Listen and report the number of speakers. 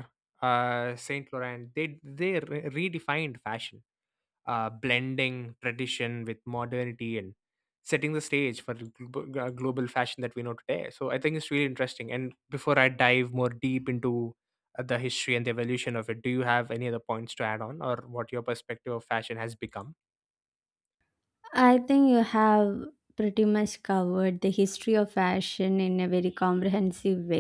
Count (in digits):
2